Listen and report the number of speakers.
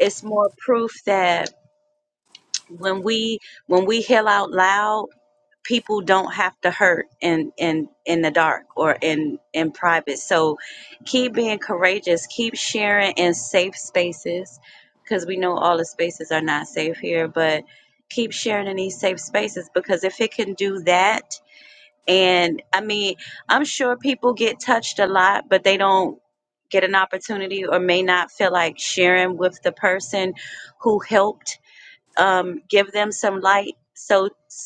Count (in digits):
1